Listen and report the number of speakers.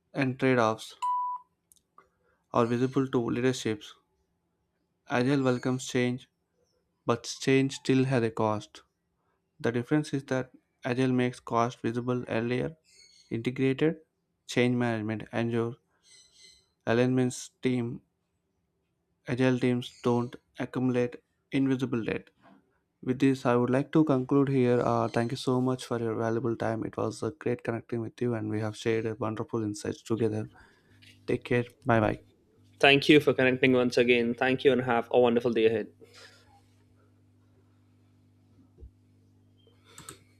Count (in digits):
2